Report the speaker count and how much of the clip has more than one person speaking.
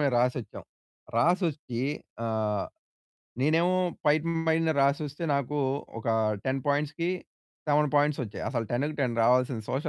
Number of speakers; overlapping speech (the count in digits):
1, no overlap